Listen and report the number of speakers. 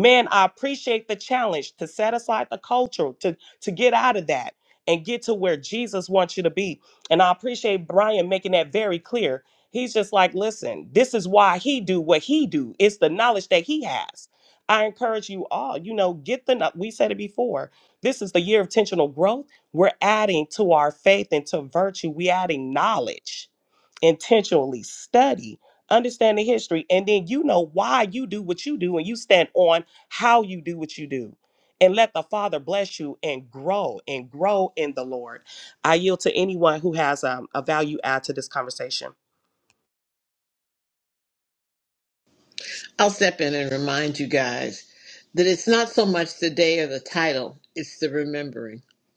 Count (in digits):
2